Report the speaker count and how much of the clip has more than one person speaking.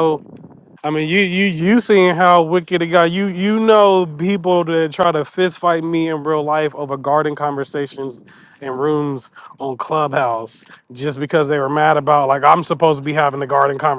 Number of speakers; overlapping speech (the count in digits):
1, no overlap